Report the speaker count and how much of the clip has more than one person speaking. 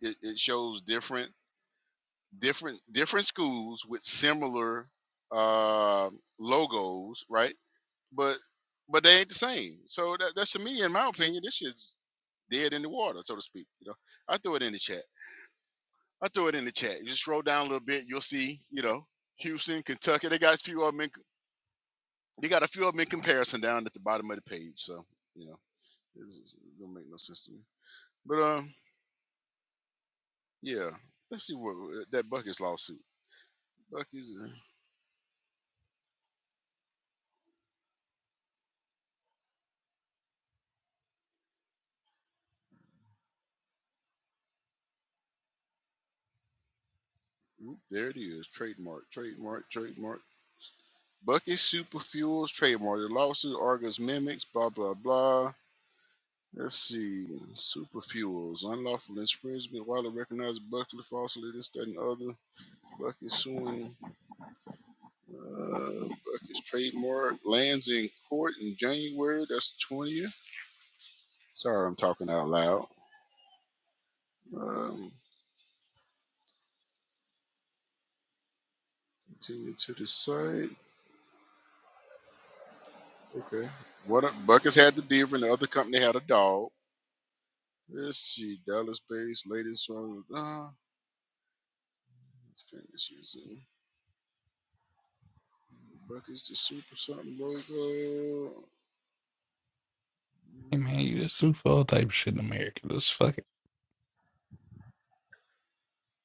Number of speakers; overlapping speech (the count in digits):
2, no overlap